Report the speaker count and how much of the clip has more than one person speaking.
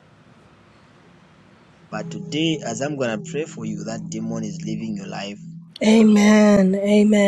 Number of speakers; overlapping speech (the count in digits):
2, about 4%